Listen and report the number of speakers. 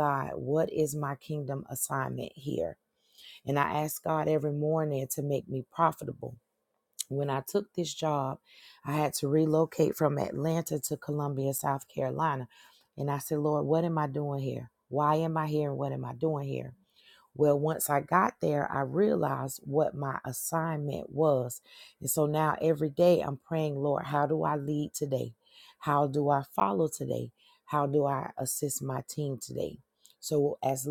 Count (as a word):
one